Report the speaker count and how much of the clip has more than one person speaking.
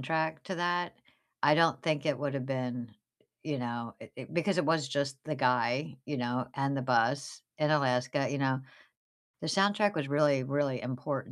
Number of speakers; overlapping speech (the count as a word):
one, no overlap